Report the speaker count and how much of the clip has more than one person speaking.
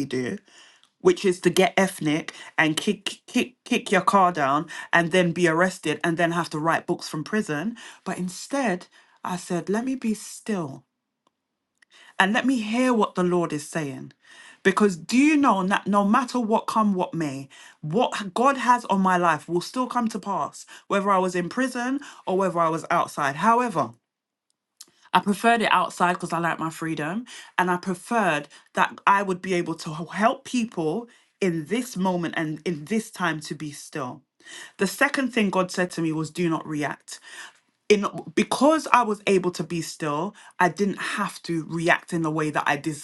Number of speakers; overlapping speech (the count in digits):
1, no overlap